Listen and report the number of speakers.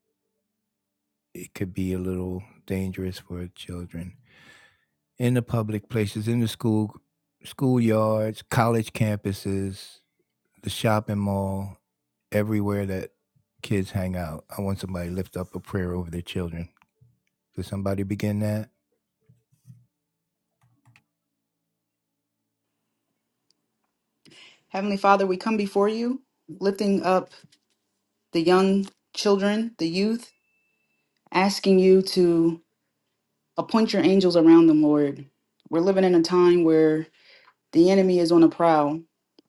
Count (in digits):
2